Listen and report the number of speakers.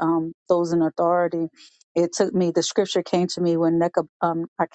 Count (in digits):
1